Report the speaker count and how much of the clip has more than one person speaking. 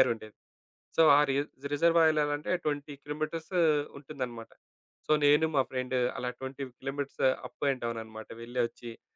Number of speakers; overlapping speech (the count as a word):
one, no overlap